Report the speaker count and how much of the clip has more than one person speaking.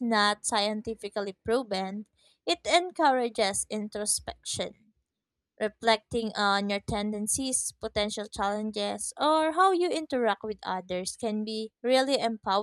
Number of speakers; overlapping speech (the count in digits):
1, no overlap